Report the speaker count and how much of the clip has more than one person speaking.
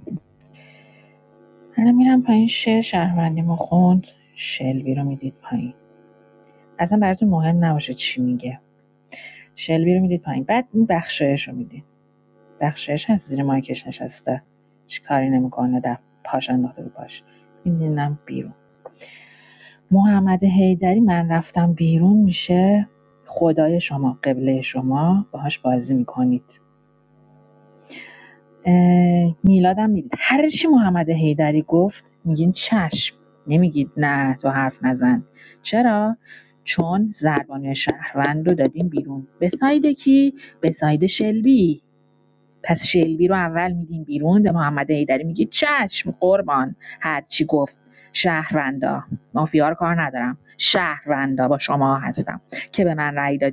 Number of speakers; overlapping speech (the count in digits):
1, no overlap